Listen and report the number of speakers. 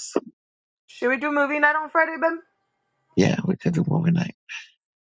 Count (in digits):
2